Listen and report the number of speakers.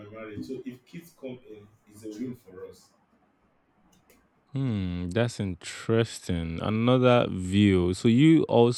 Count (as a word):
two